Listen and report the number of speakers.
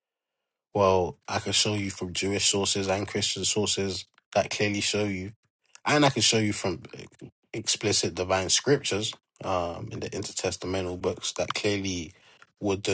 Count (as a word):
one